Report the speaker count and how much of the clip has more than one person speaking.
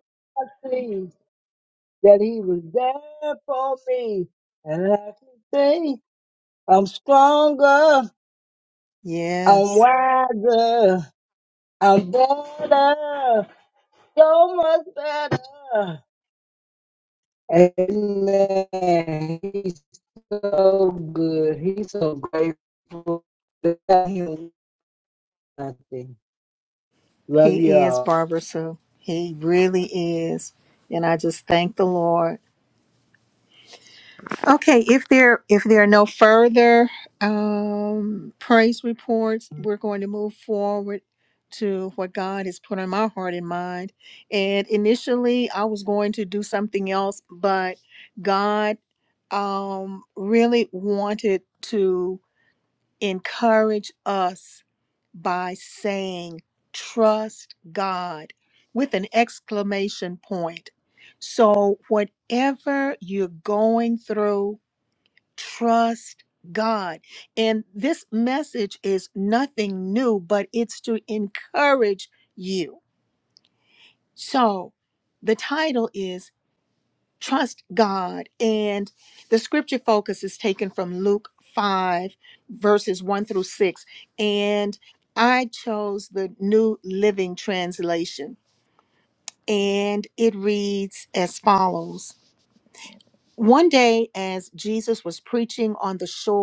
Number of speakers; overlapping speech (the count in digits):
2, about 1%